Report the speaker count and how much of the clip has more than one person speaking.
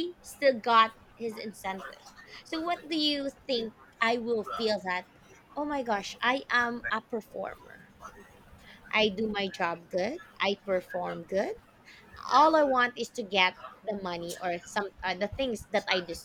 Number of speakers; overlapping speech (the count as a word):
one, no overlap